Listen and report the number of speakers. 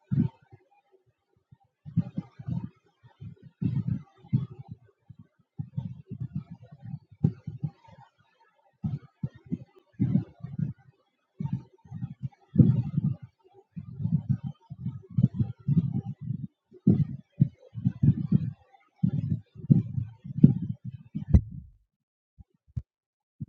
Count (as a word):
zero